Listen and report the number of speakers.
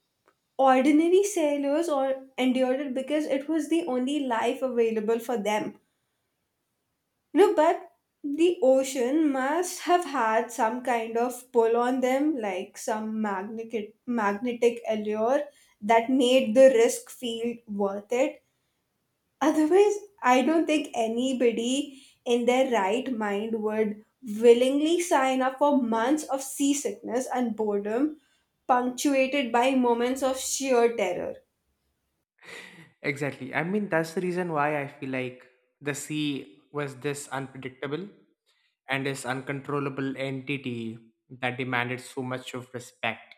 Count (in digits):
2